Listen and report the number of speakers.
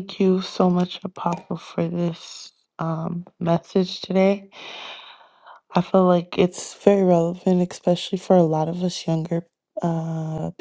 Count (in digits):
1